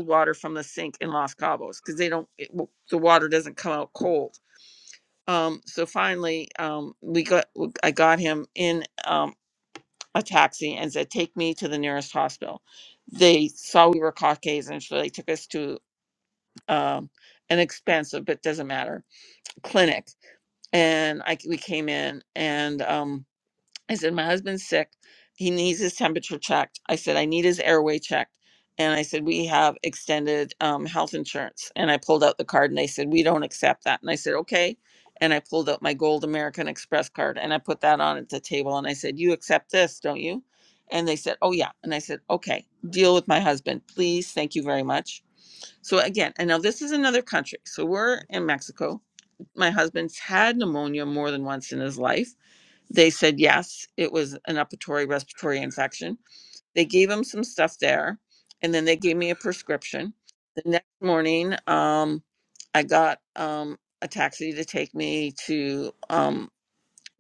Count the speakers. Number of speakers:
1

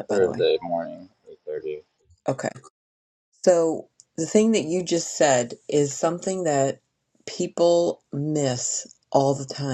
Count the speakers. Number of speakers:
2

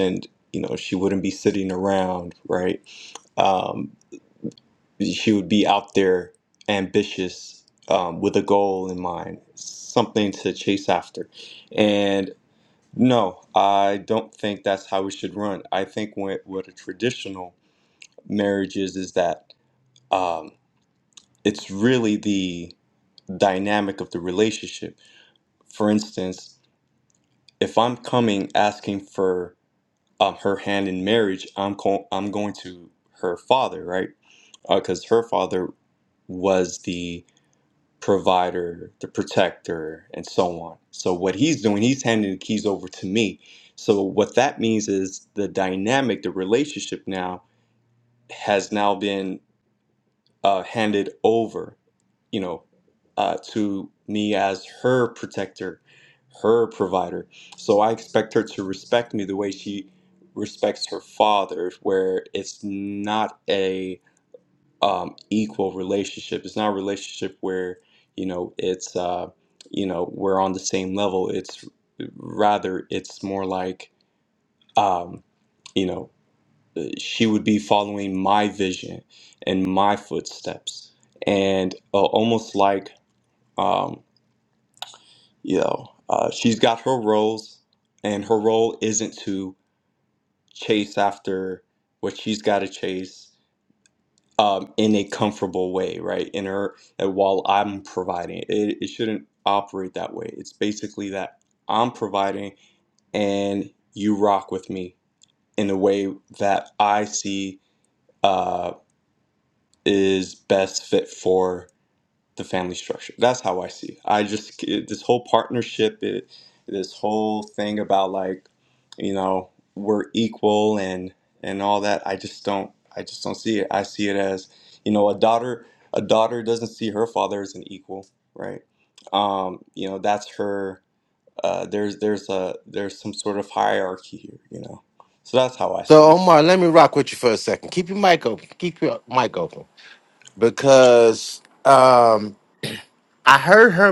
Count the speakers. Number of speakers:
2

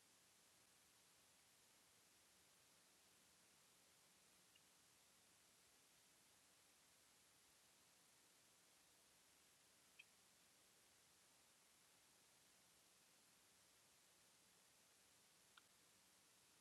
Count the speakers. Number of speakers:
0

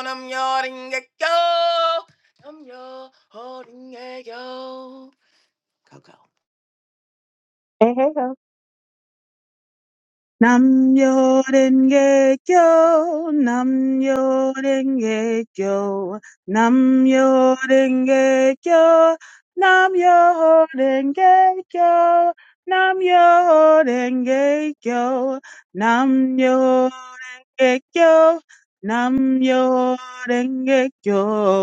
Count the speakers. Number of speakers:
2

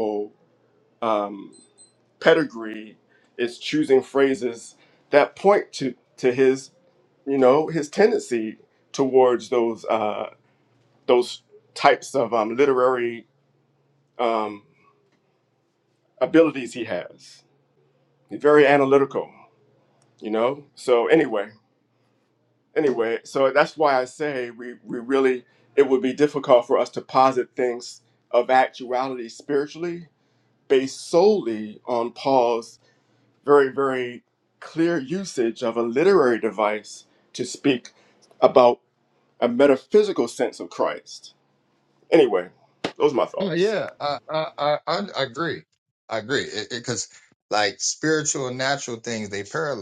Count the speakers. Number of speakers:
2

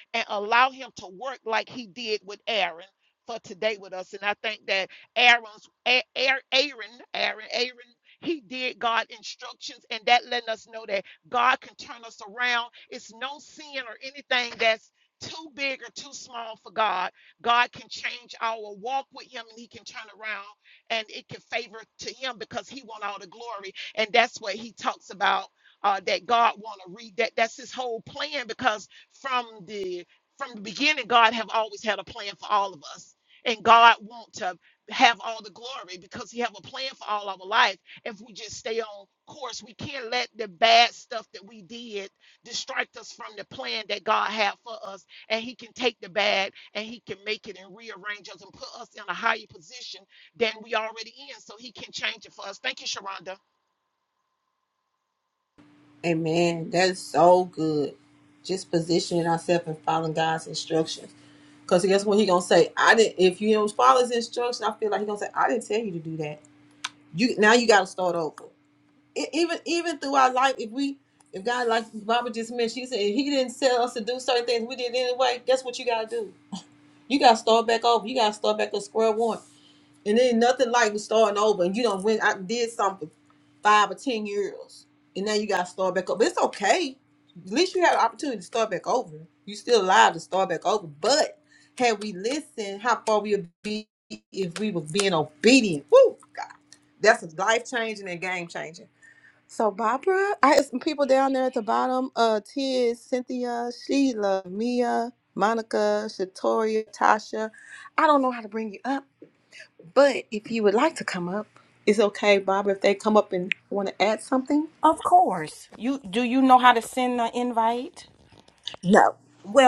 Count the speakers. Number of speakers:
3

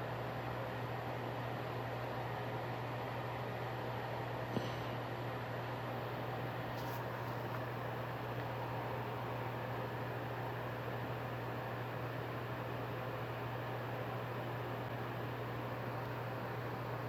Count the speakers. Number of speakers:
0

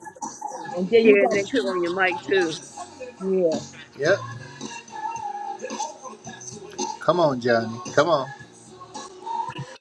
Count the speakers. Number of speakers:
3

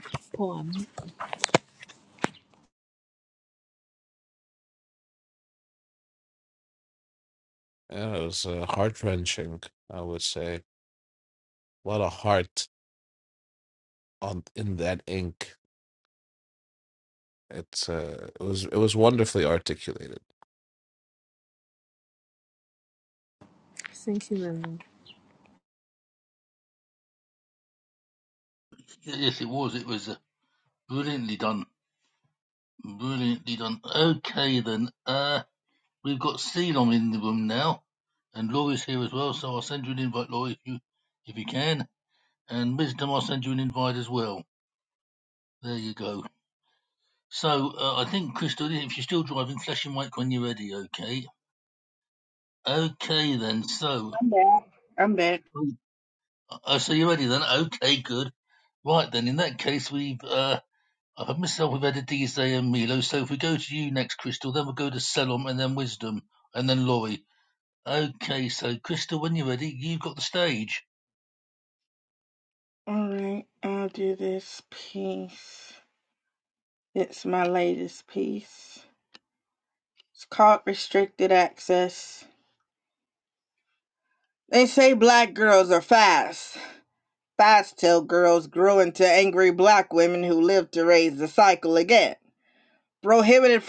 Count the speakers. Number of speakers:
4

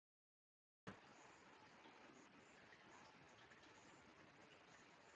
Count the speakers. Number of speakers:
0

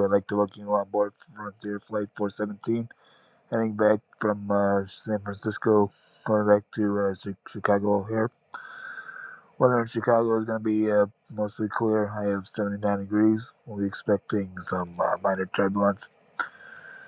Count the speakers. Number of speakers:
1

